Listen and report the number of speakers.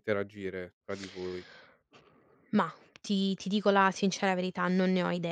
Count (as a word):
two